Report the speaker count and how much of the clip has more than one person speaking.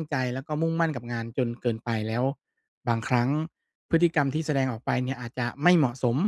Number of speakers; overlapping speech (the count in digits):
1, no overlap